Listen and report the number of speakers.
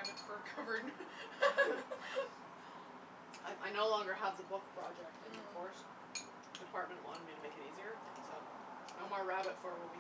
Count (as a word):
two